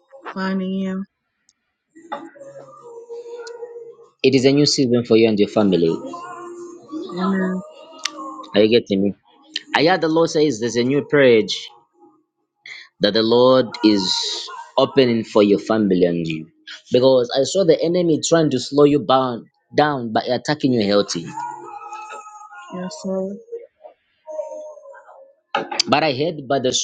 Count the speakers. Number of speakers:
2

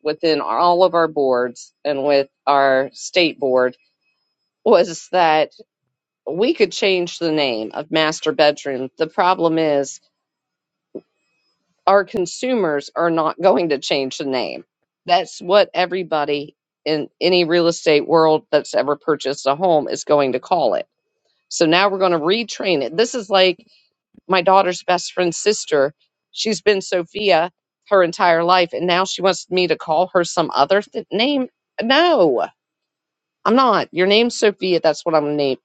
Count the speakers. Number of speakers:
1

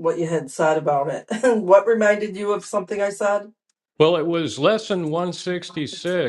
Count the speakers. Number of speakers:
2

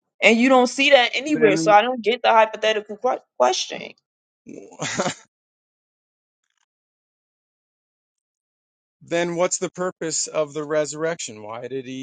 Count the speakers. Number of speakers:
2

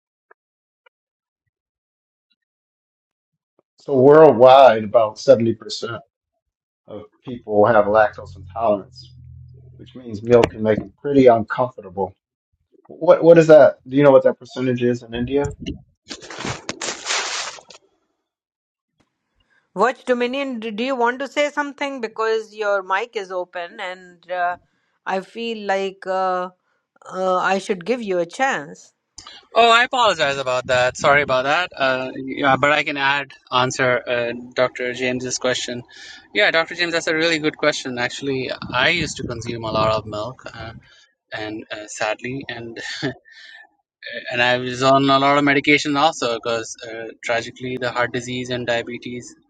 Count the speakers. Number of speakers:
3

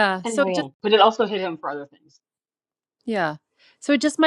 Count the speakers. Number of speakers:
2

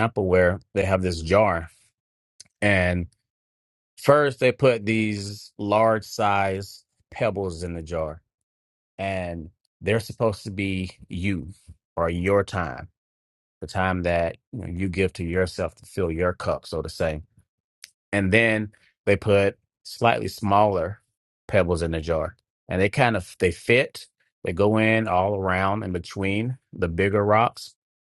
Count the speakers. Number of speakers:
1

